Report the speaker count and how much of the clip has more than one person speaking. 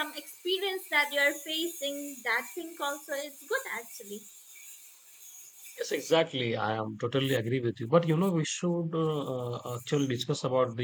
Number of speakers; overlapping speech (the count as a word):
two, no overlap